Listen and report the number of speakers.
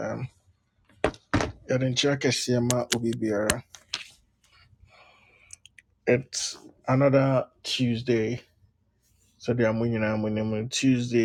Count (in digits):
1